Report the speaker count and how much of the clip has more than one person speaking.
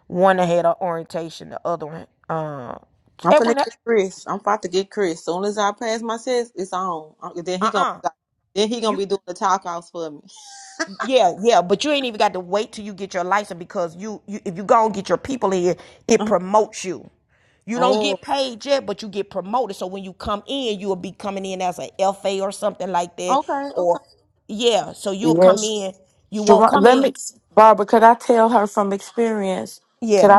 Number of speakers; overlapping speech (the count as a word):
three, about 10%